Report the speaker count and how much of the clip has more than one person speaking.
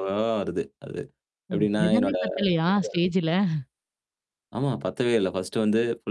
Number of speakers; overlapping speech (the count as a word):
two, about 12%